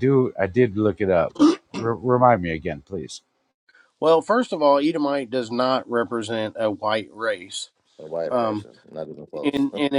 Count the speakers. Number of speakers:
three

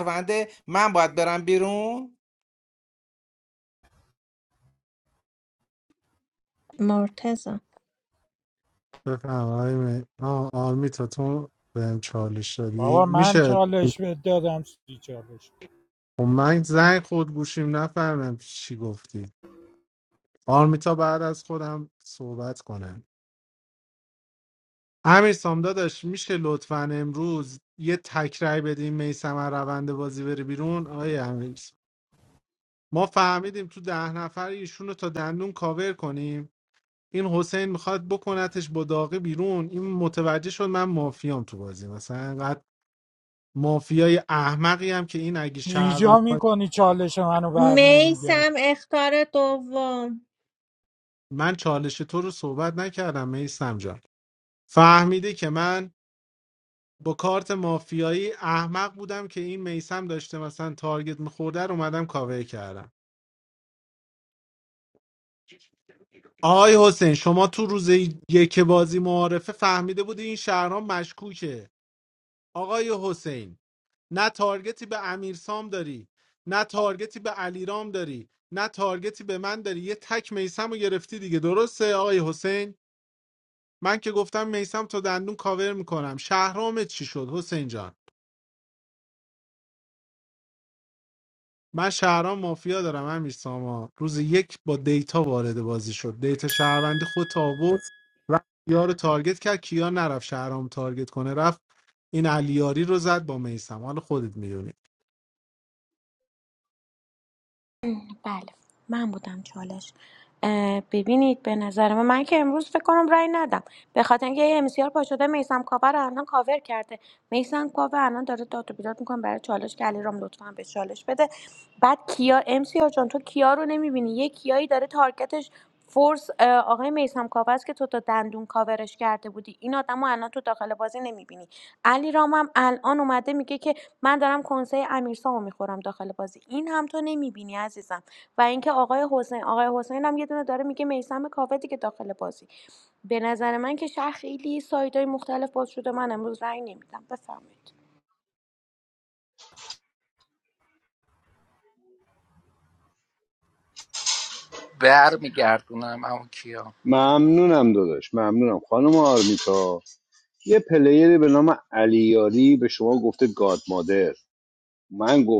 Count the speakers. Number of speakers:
seven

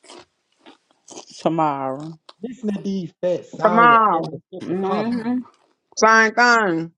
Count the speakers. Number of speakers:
three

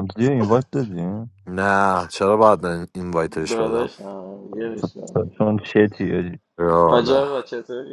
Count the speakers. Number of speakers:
three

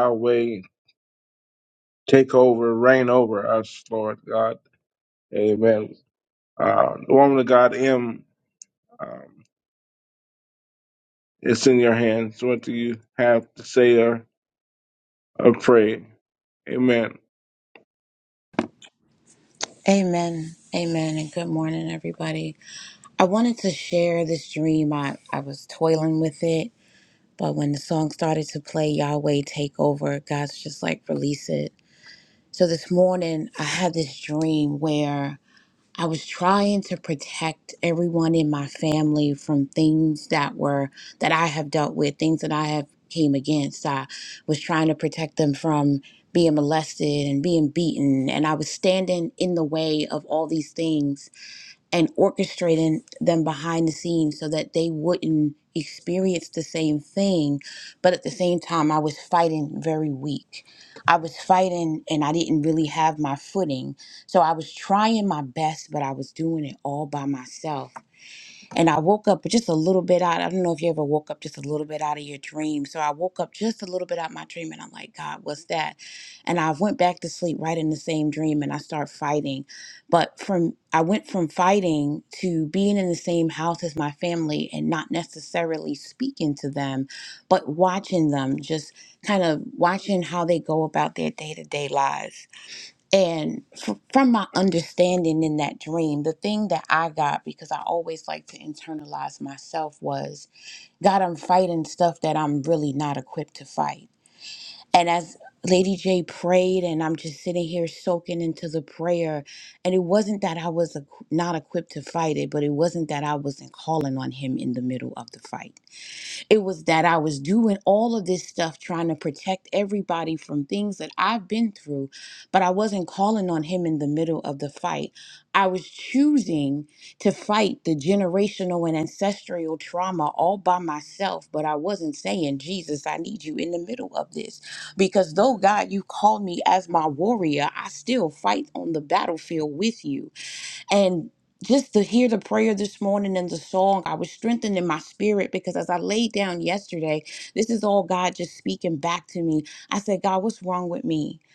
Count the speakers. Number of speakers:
two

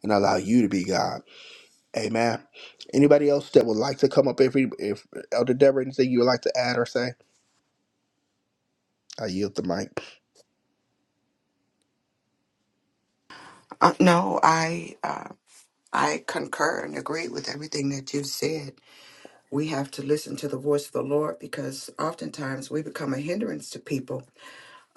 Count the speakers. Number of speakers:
two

